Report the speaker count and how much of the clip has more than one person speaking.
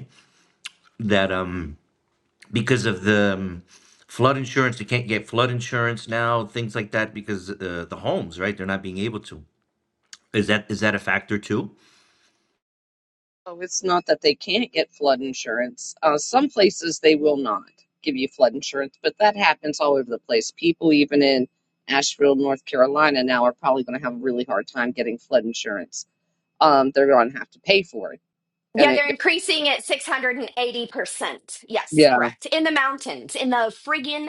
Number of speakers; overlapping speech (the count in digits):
3, about 2%